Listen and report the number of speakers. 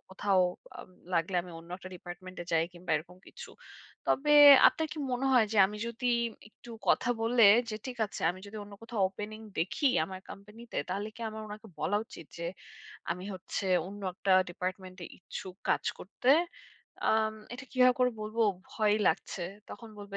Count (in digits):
1